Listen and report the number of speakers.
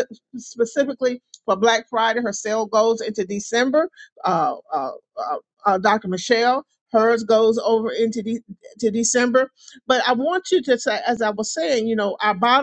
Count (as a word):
one